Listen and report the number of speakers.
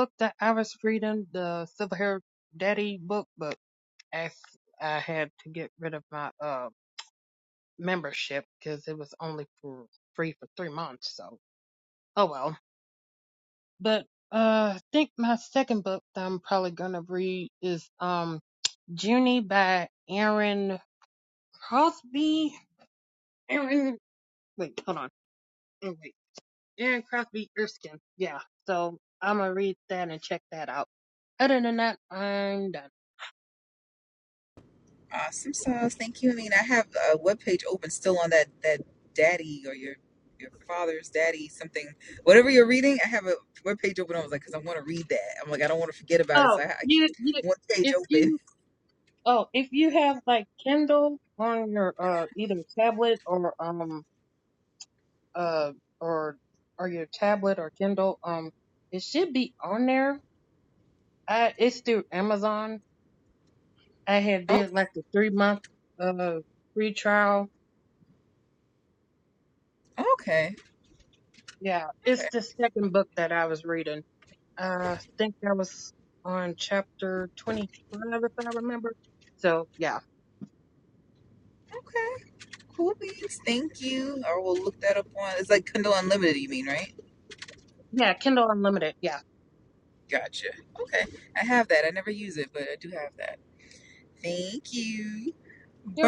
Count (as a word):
two